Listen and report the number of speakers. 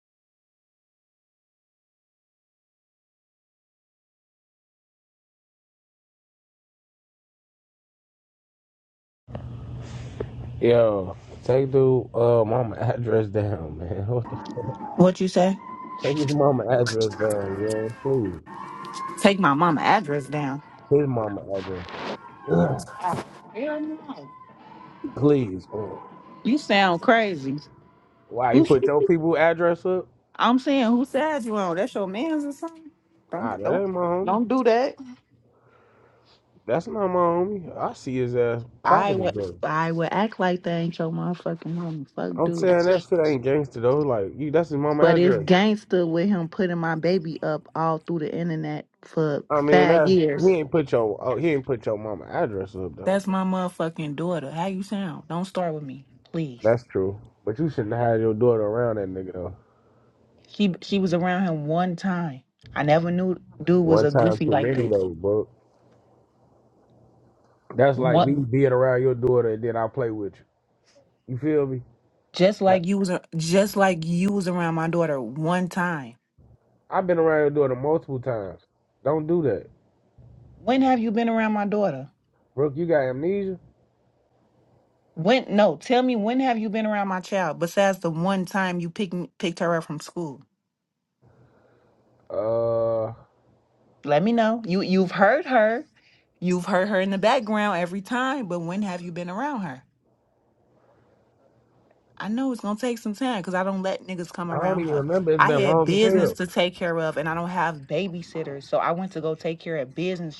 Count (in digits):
2